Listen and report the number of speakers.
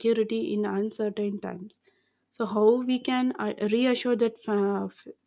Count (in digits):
1